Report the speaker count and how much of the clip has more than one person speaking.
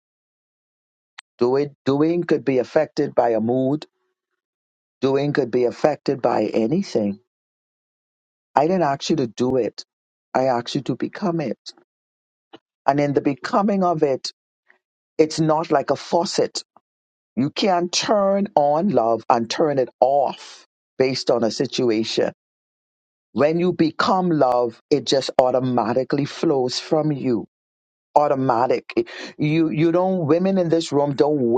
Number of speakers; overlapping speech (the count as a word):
one, no overlap